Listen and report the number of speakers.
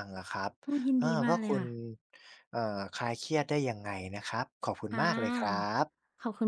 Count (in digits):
2